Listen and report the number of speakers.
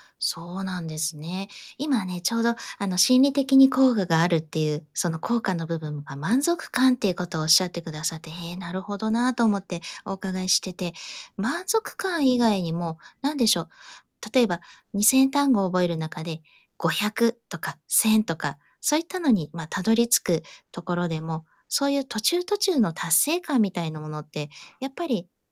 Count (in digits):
1